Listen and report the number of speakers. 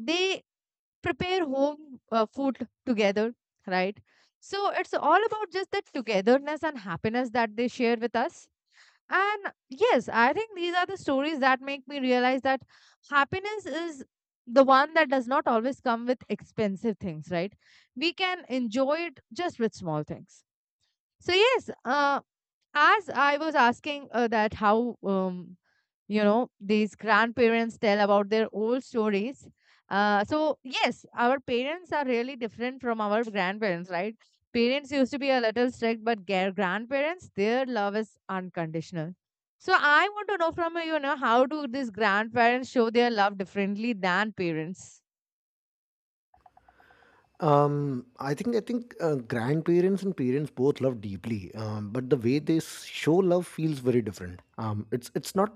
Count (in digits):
2